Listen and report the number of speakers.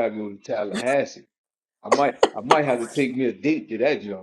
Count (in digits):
1